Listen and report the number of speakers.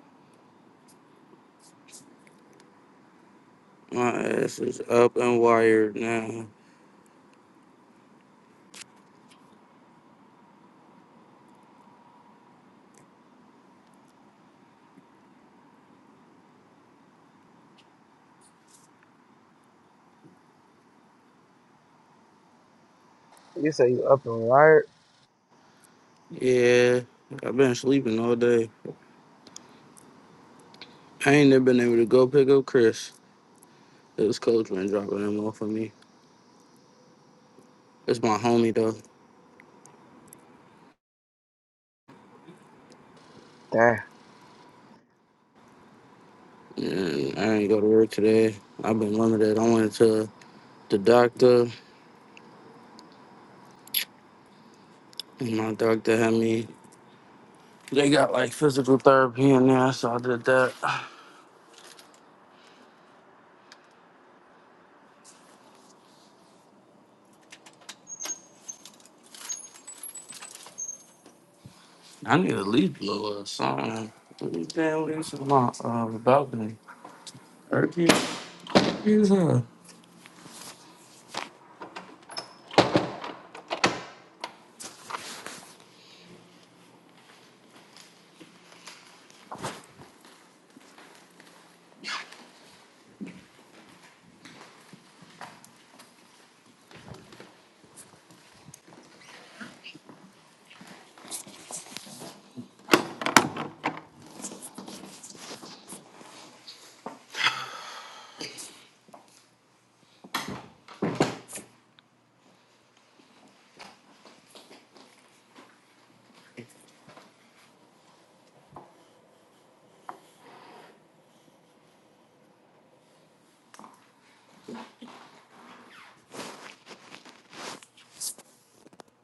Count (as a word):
two